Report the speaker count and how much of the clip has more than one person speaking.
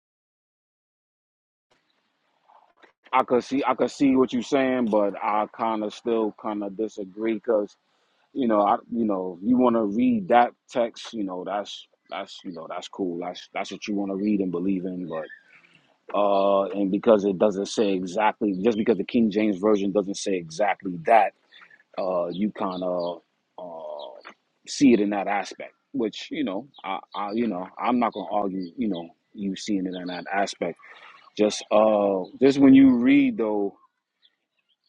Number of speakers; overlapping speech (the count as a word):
one, no overlap